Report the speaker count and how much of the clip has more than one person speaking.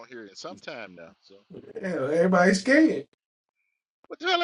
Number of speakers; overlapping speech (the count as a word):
two, no overlap